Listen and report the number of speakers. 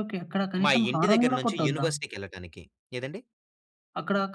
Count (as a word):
two